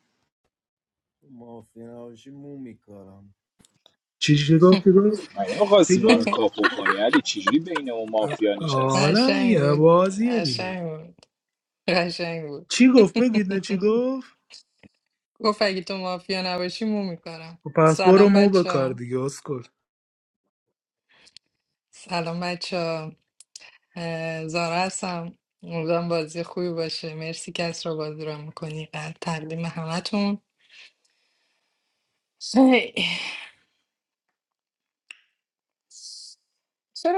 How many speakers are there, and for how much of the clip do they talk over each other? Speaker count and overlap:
four, about 10%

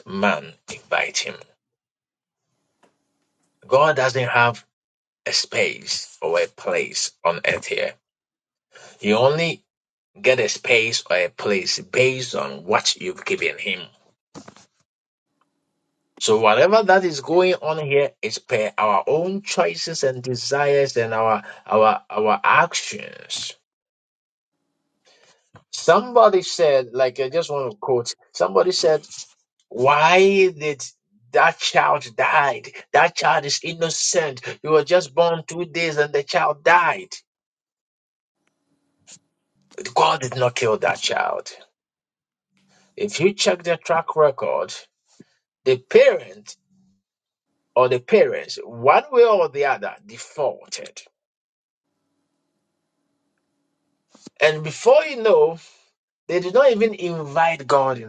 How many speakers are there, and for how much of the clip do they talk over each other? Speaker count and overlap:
one, no overlap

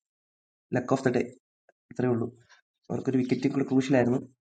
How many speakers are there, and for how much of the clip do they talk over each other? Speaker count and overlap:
one, no overlap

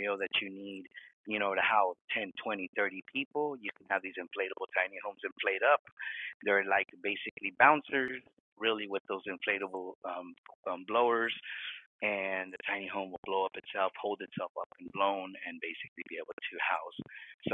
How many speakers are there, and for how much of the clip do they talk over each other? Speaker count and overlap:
one, no overlap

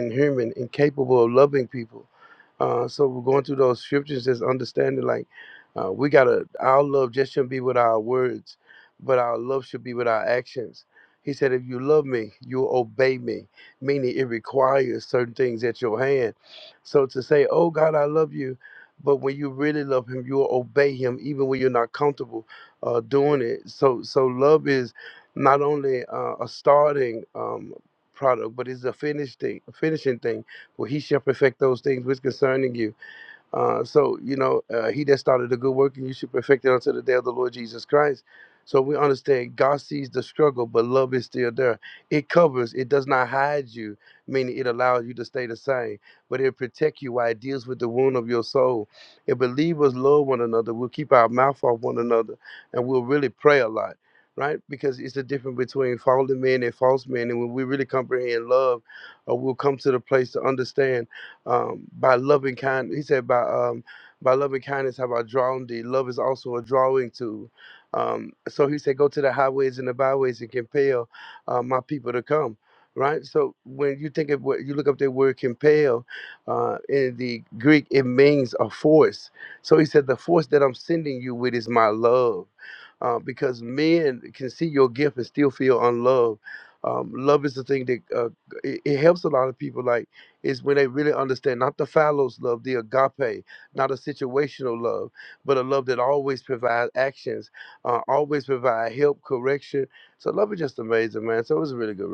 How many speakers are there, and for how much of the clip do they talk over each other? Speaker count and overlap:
one, no overlap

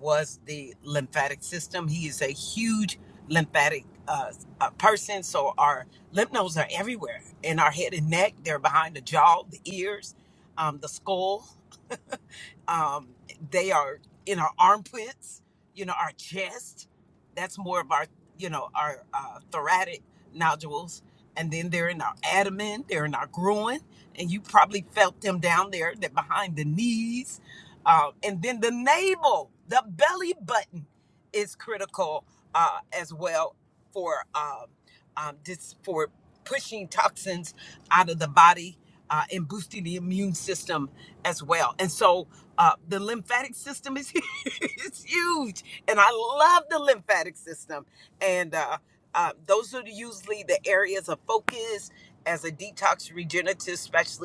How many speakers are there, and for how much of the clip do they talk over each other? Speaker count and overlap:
one, no overlap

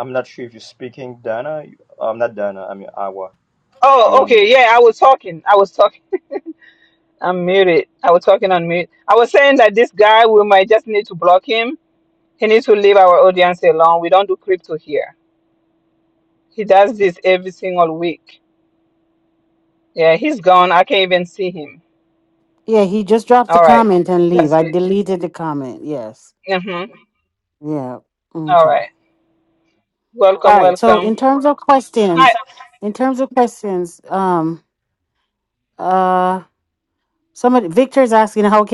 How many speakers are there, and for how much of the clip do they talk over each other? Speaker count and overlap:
three, about 6%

